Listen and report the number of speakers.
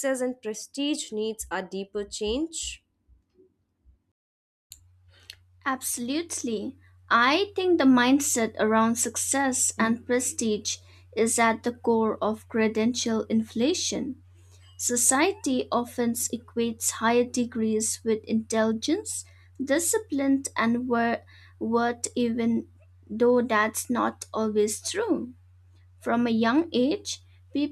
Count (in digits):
2